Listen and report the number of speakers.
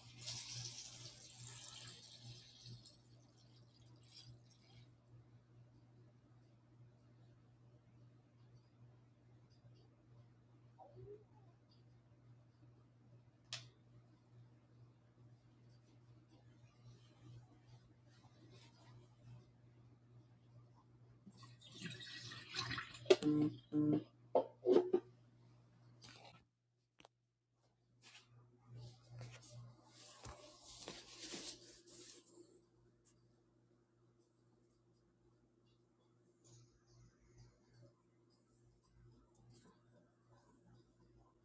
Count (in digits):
0